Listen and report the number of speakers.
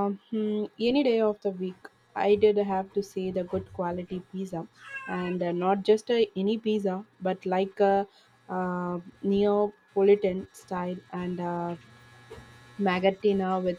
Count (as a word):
one